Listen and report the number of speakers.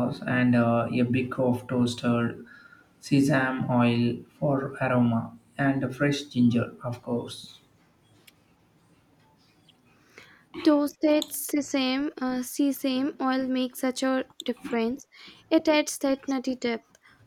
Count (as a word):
two